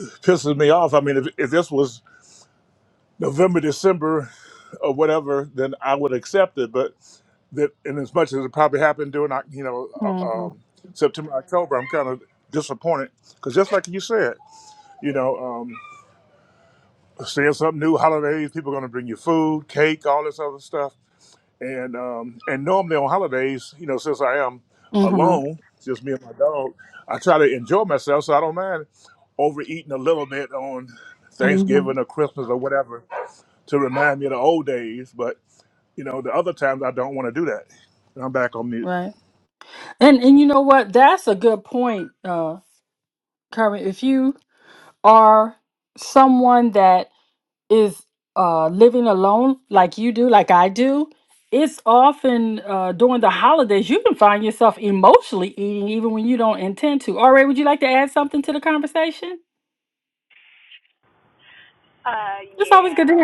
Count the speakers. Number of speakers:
3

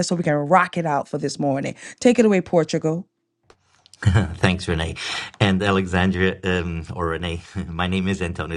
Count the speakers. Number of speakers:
2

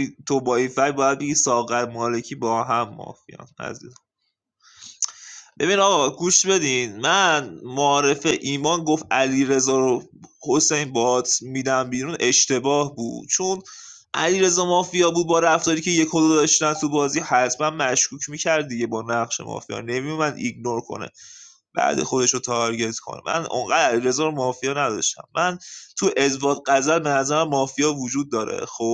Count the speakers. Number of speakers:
1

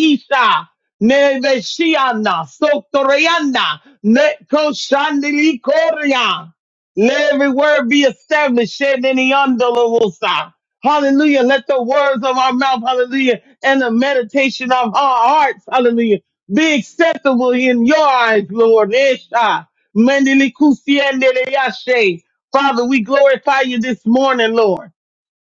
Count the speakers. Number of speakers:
1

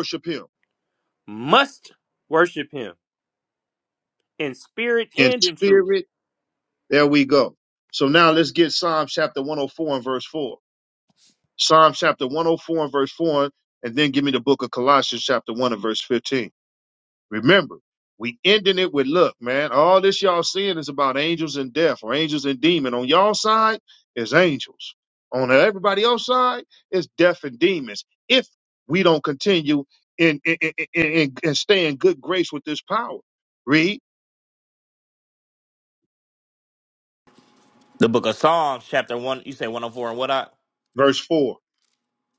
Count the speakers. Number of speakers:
3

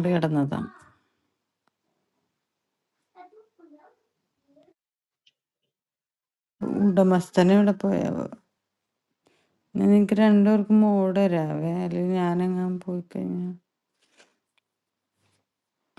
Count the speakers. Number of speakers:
1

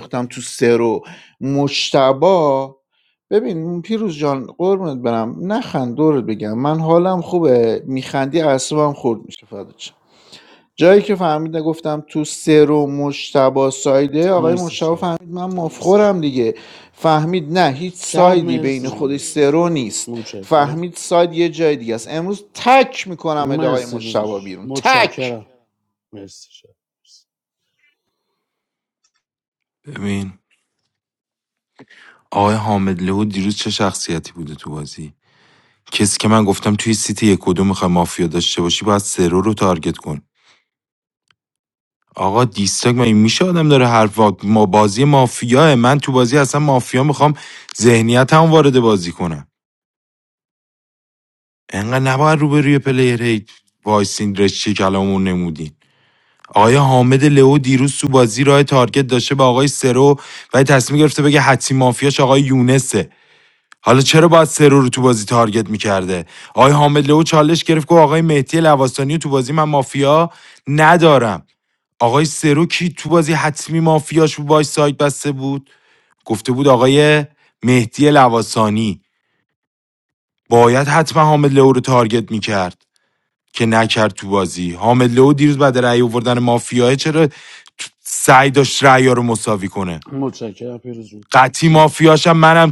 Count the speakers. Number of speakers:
3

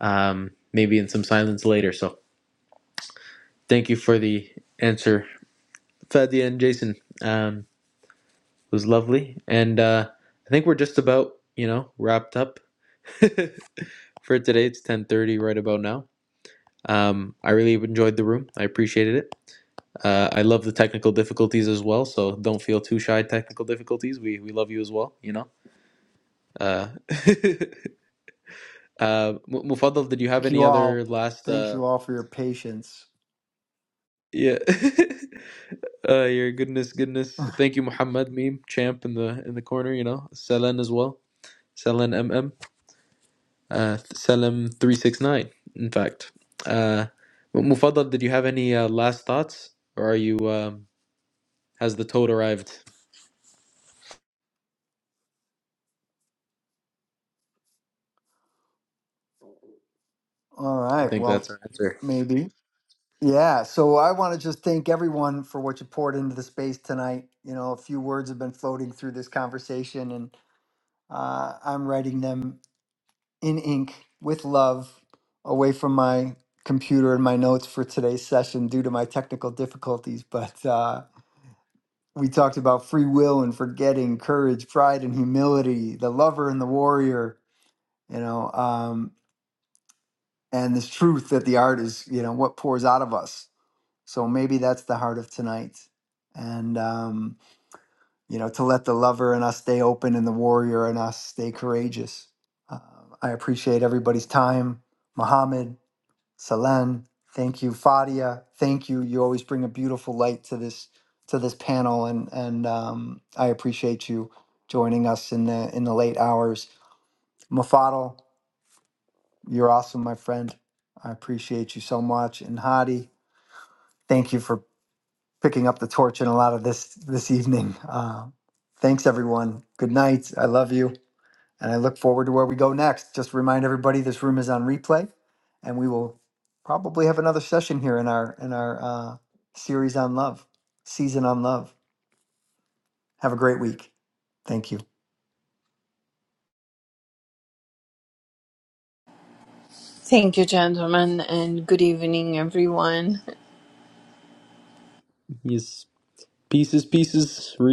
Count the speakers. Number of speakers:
3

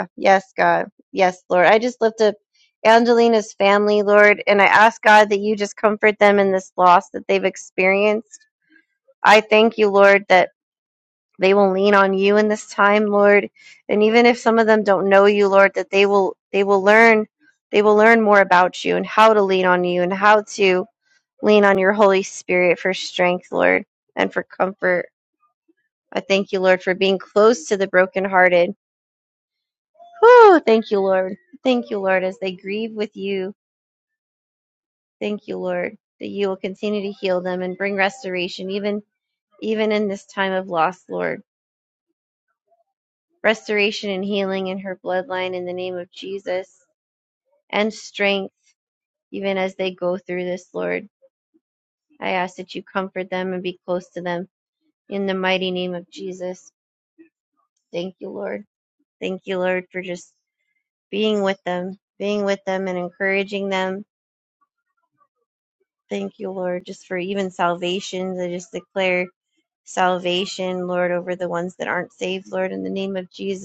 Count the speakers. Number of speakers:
1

